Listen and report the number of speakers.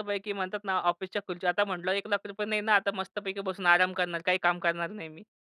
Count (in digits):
1